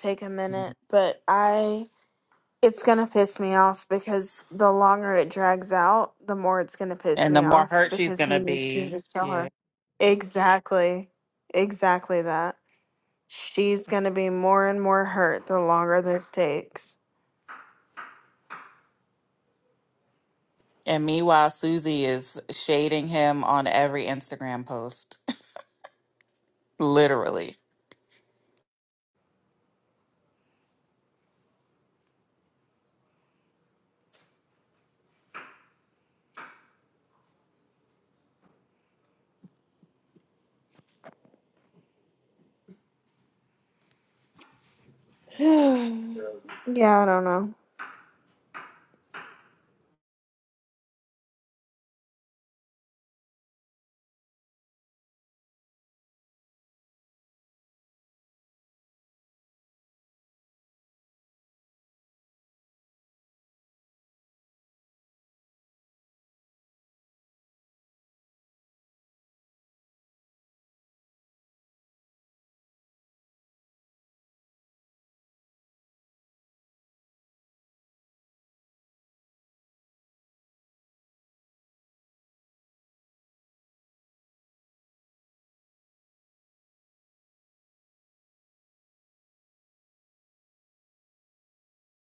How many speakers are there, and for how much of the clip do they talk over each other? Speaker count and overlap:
2, about 2%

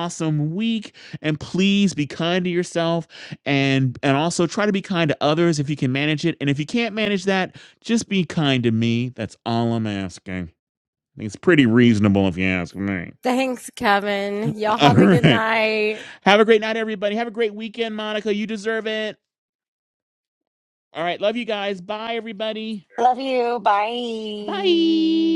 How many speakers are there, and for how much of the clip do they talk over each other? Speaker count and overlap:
3, about 3%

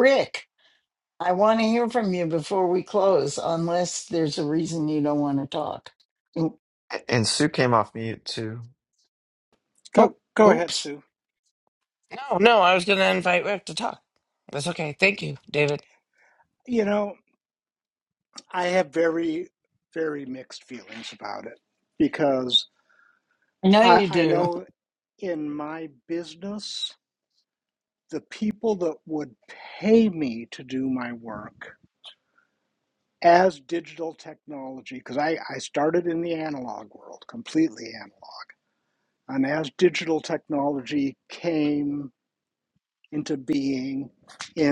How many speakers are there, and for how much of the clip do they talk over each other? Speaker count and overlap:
4, about 3%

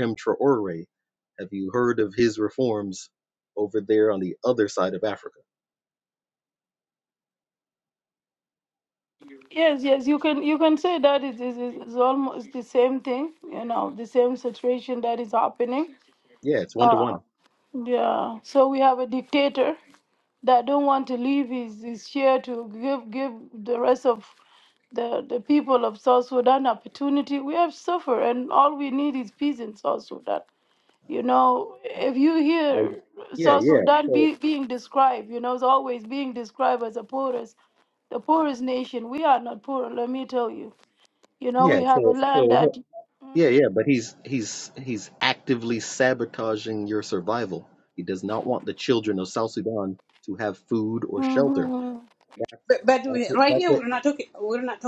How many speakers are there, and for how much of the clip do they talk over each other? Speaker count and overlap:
3, about 7%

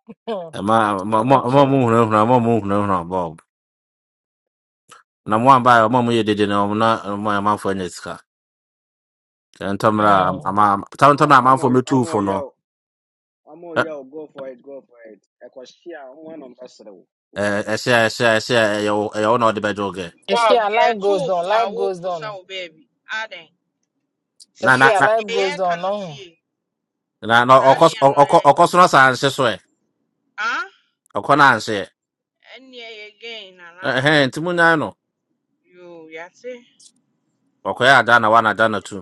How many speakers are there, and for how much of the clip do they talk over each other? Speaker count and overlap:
4, about 18%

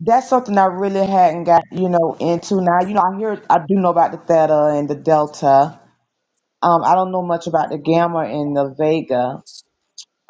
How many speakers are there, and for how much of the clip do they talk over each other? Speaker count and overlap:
1, no overlap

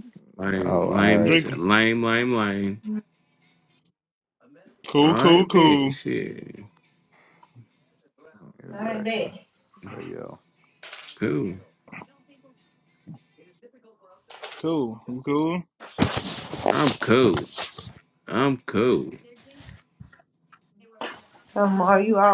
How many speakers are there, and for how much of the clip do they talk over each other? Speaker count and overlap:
4, about 11%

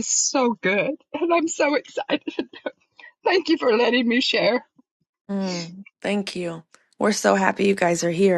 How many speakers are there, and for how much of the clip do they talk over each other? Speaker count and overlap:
2, no overlap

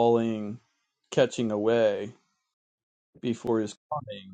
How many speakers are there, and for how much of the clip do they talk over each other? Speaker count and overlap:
1, no overlap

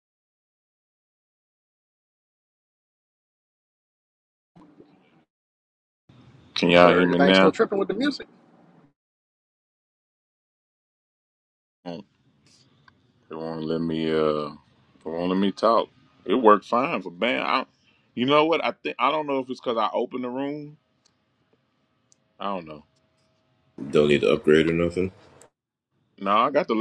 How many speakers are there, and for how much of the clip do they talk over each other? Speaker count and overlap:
3, about 3%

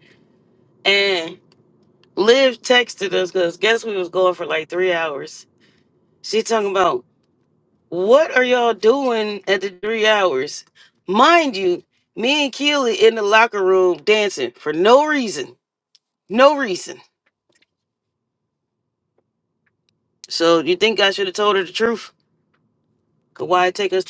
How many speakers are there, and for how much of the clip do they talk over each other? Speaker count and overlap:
1, no overlap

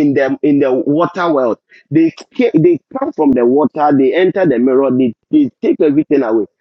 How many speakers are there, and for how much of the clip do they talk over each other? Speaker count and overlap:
1, no overlap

